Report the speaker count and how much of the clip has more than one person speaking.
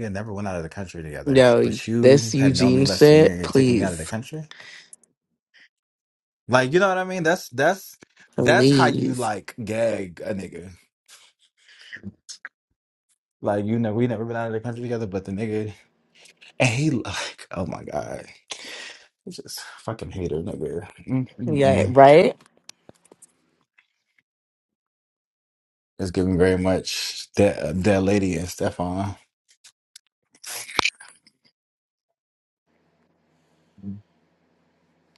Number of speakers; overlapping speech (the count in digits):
2, about 10%